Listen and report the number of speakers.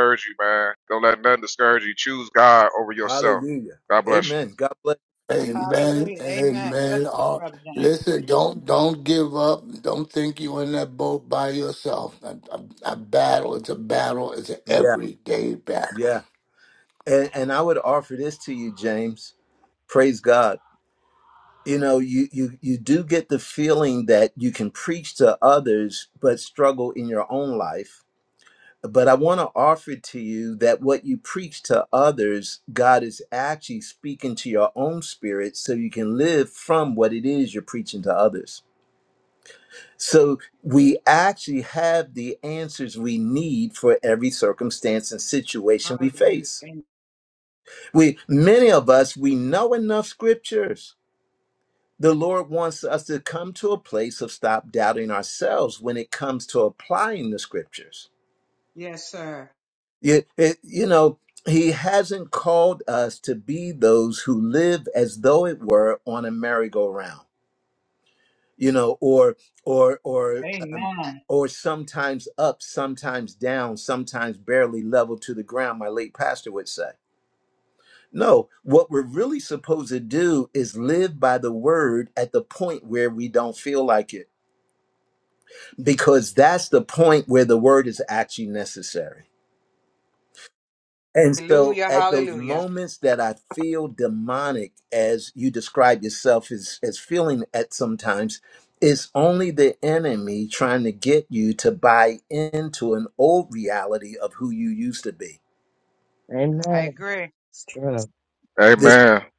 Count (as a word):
five